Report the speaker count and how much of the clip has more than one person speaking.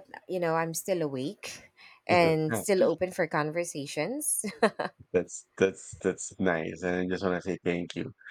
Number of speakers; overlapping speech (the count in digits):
2, no overlap